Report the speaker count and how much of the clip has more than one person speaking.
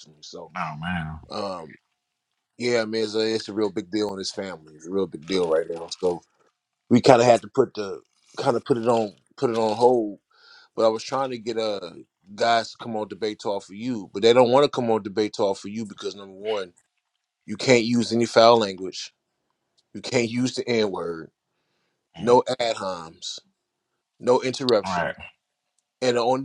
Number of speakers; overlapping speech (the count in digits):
2, about 2%